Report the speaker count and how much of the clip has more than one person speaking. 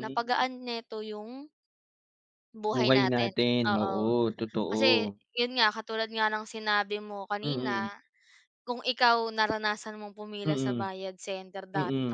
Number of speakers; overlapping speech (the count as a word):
two, about 24%